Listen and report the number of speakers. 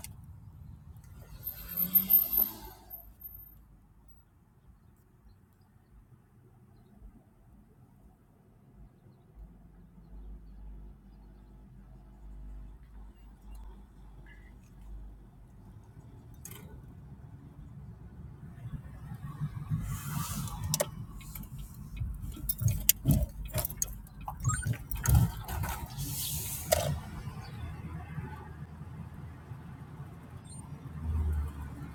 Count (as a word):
zero